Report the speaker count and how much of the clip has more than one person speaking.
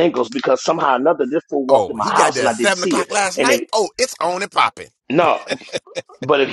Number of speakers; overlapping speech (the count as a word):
two, about 30%